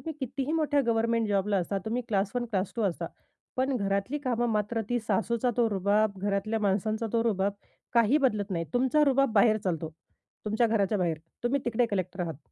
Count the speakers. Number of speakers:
1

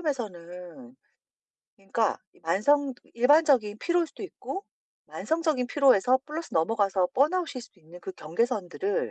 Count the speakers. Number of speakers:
1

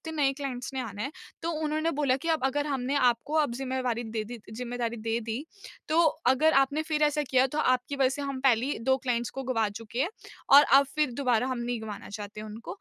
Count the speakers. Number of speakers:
1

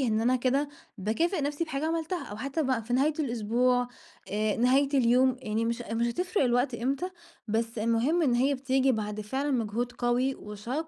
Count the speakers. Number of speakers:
1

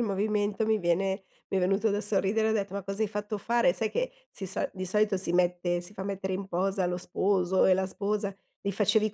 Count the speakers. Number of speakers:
1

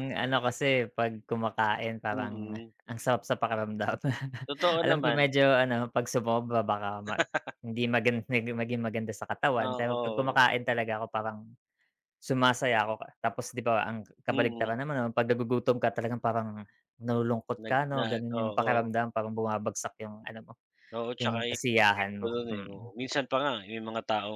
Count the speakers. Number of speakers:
2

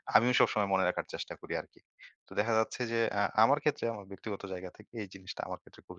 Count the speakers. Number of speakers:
1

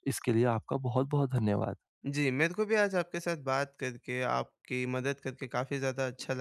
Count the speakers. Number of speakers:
2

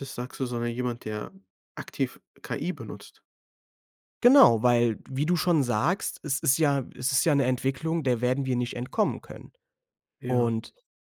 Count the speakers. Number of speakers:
2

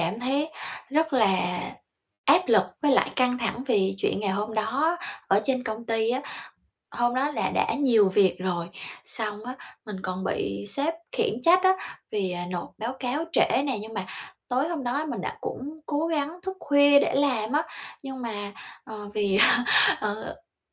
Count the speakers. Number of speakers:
1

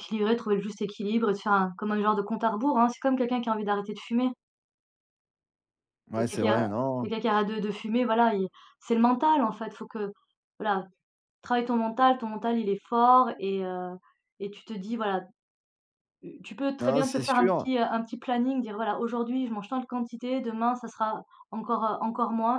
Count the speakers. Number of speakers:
2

